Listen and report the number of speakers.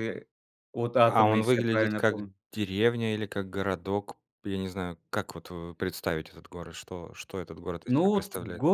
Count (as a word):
two